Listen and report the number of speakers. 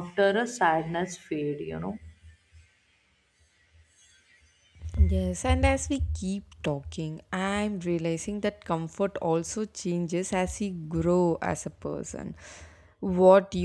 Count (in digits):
2